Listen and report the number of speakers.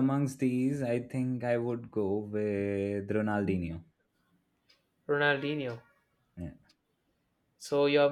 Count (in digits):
2